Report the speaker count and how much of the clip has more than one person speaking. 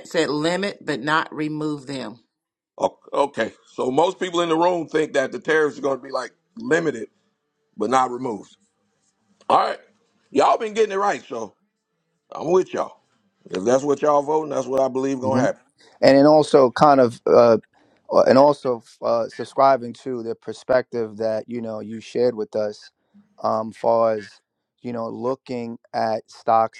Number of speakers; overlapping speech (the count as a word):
three, about 1%